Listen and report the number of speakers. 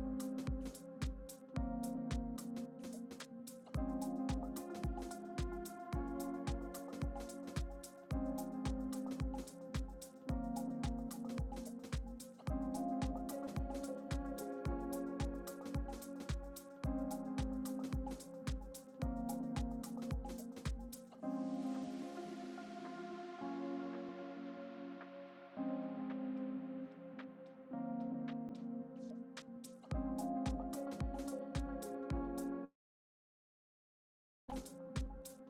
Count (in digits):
0